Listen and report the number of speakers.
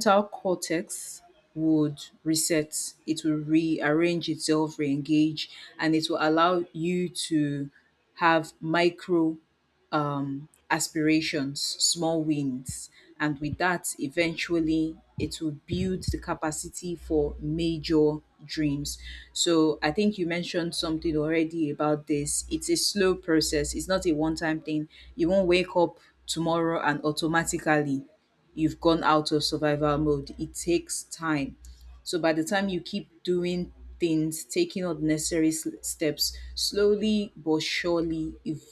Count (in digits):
1